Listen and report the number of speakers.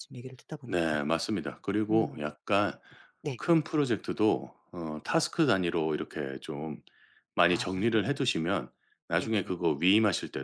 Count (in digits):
2